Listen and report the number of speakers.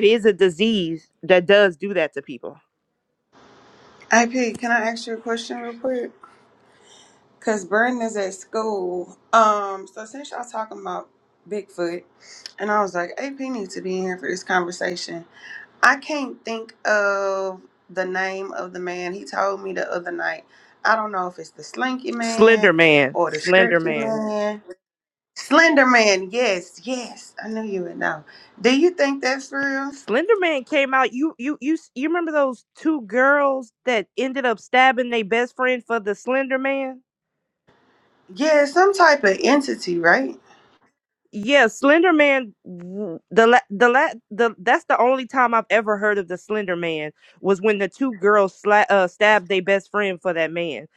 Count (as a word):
two